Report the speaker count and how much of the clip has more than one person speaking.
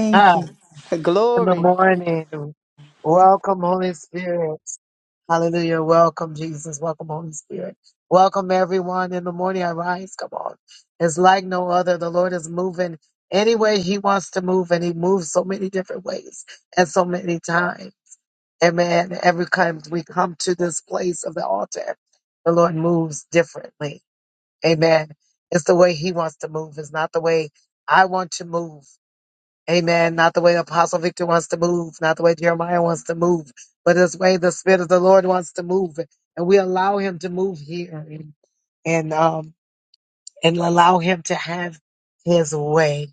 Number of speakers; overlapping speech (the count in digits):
2, about 2%